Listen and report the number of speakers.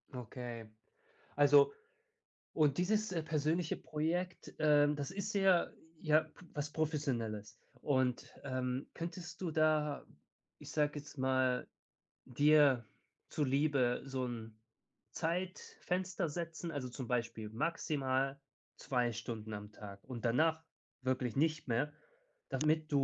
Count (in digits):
1